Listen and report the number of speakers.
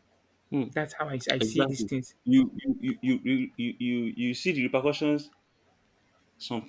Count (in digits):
2